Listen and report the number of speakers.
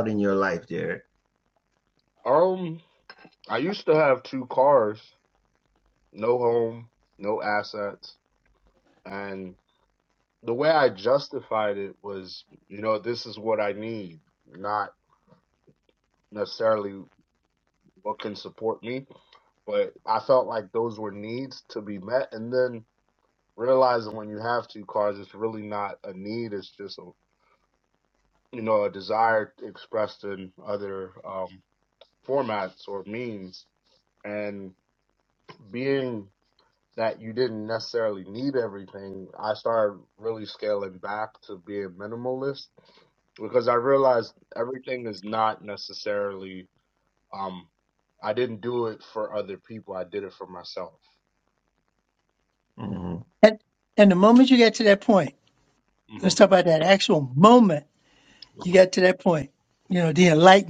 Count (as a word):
three